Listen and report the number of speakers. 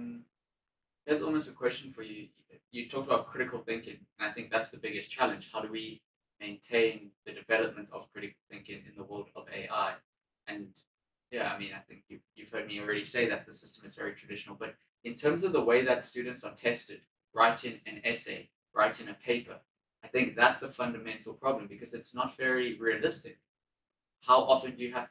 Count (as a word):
one